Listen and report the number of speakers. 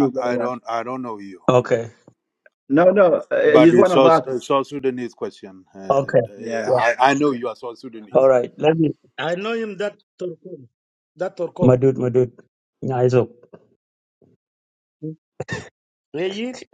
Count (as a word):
four